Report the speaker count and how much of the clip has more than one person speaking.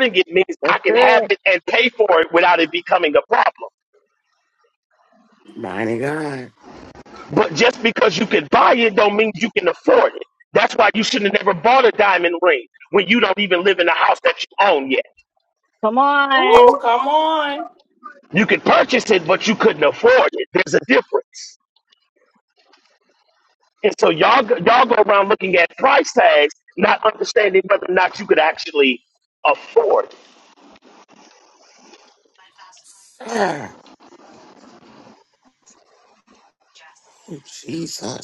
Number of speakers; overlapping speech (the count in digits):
4, about 3%